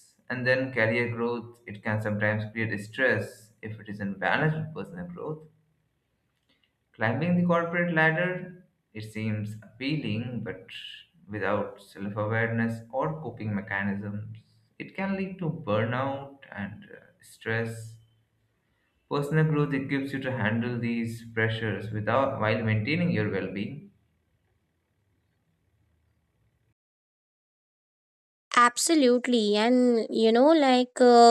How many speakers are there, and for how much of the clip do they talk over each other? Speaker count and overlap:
2, no overlap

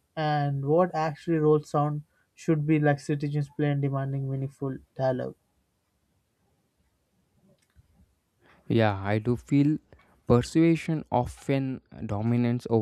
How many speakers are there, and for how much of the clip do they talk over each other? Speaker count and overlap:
2, no overlap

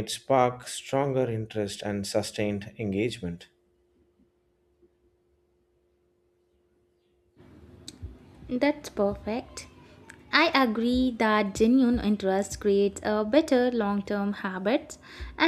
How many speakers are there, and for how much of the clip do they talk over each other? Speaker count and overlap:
2, no overlap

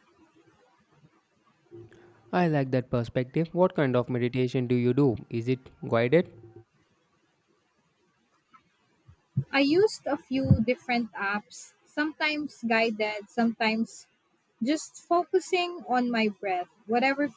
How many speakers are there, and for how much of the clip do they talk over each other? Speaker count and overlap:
2, no overlap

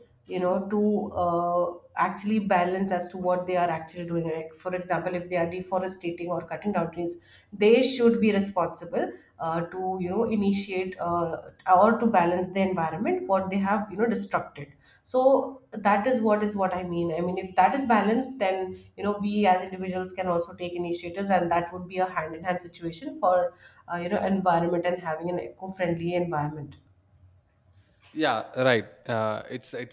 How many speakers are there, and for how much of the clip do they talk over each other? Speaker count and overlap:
2, no overlap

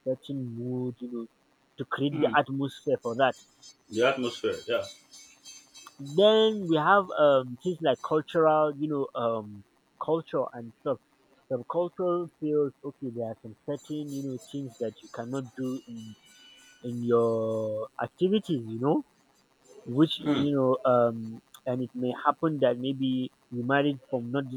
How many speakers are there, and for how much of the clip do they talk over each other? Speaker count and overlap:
2, about 2%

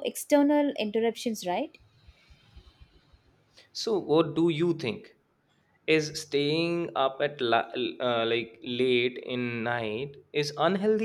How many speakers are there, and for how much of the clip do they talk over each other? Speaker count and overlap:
2, no overlap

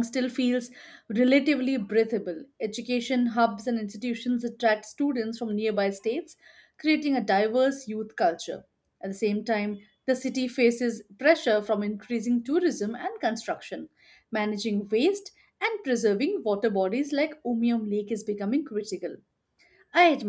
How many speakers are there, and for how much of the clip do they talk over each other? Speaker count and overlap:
1, no overlap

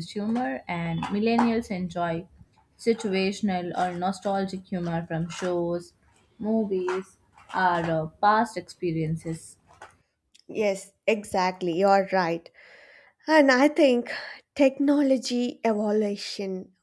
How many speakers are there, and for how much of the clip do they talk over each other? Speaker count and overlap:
2, no overlap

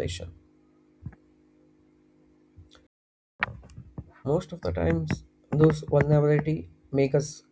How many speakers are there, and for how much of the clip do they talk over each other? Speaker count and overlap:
1, no overlap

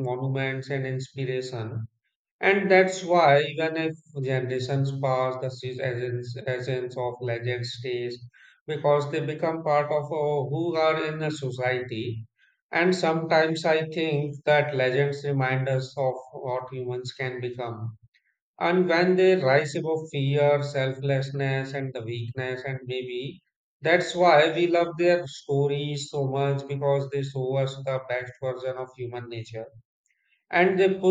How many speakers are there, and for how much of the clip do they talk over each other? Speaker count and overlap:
1, no overlap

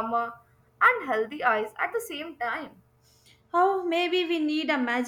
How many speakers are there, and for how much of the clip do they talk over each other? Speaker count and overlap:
2, no overlap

